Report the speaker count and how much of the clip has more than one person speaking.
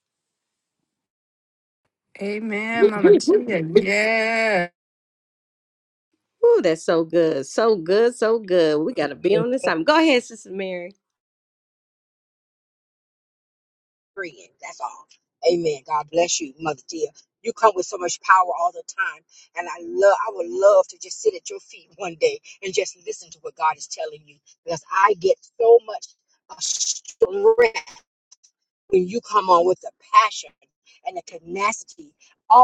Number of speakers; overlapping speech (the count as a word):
three, no overlap